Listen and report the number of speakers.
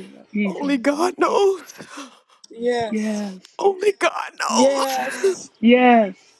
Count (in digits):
3